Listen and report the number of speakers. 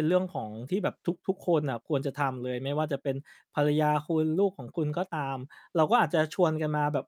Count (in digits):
1